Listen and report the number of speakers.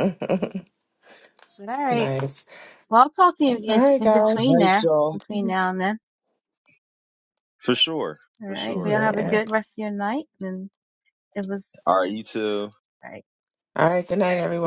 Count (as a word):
three